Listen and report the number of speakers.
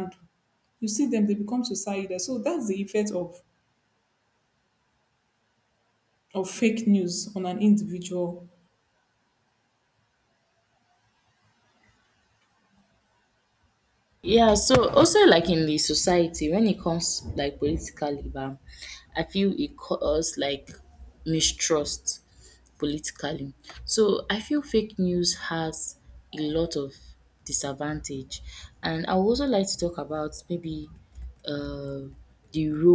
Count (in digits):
2